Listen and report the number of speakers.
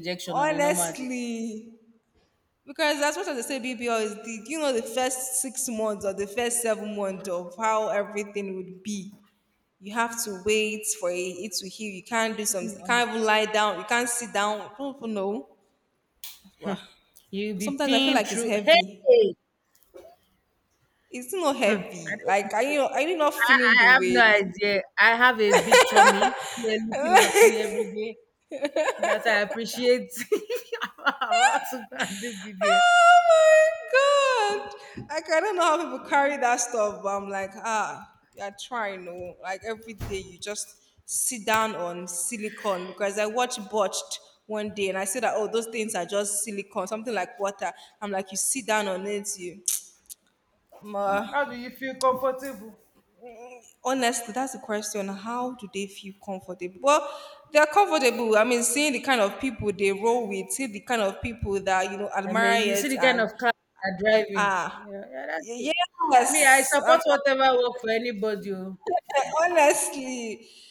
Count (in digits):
2